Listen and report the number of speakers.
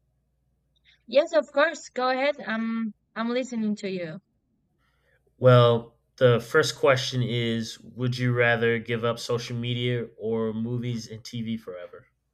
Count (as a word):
two